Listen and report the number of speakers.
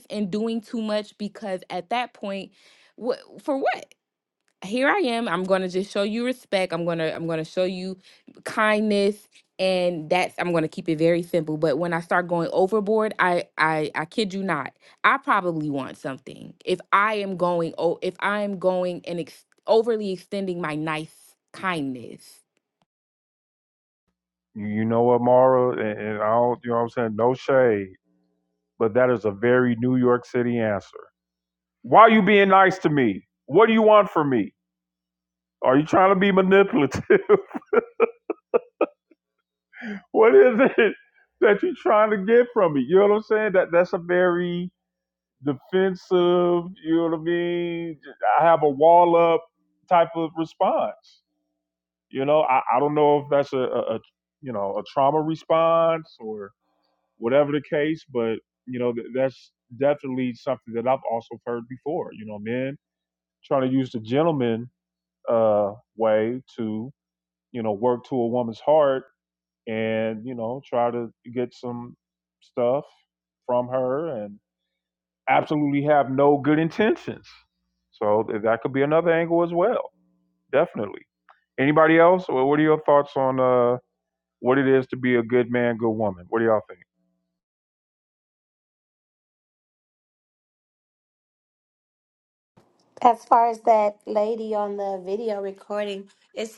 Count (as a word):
three